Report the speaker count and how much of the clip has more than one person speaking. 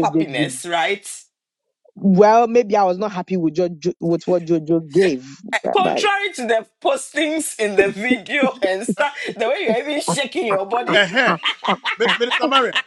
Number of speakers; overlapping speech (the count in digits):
3, about 8%